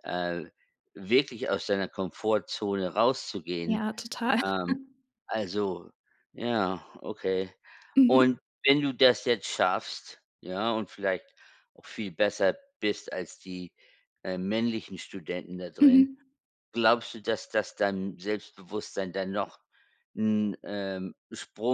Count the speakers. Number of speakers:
2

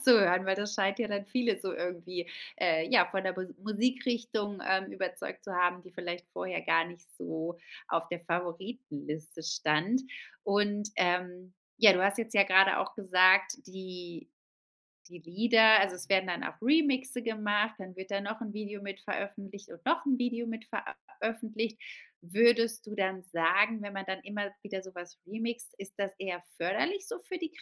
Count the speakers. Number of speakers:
1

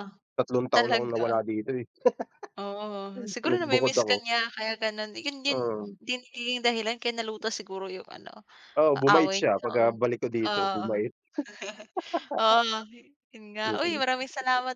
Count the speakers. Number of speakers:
2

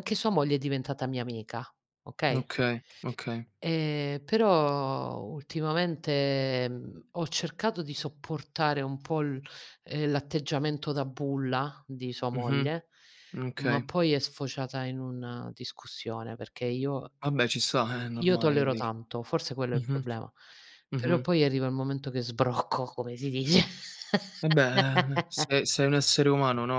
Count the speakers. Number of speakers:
2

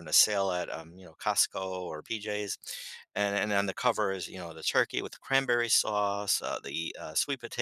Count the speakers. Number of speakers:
1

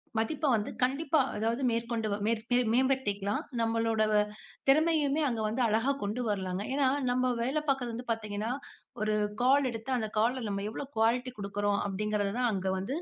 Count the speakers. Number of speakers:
1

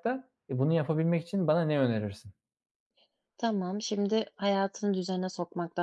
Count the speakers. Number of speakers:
2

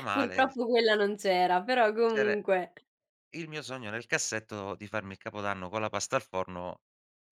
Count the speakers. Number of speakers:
2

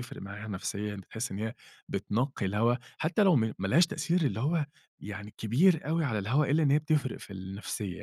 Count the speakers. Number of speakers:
1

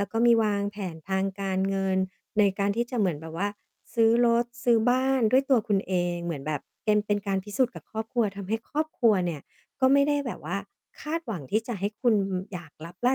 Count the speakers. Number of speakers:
1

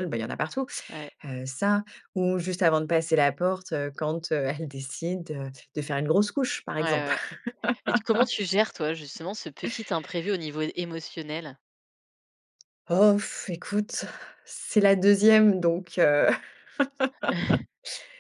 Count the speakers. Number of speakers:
2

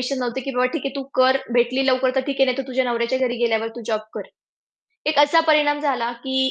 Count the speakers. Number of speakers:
1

